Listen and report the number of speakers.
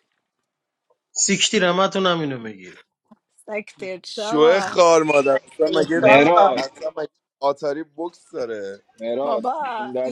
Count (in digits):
4